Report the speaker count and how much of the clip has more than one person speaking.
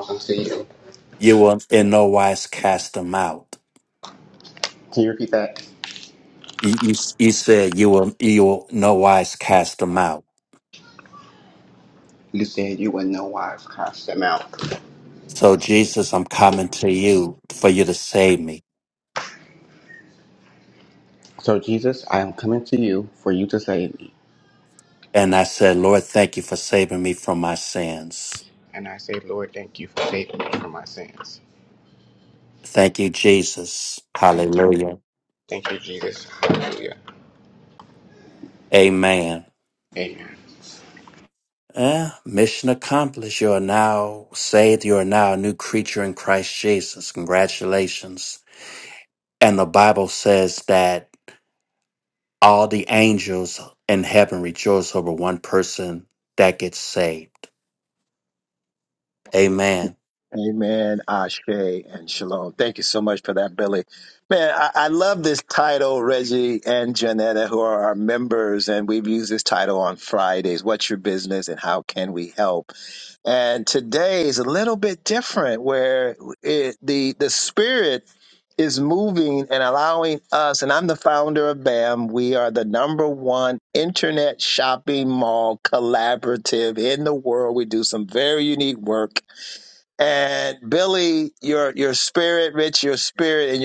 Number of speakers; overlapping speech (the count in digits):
3, under 1%